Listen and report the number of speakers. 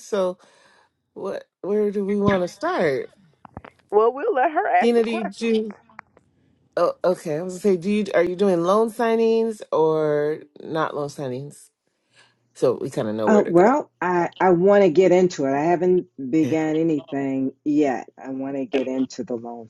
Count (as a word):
three